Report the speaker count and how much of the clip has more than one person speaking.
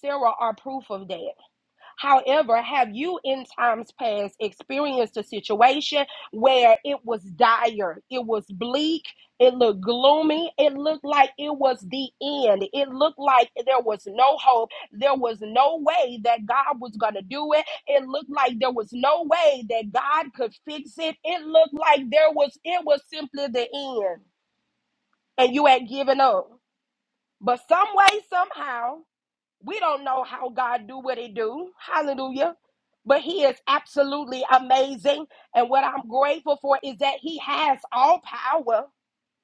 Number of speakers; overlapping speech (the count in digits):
1, no overlap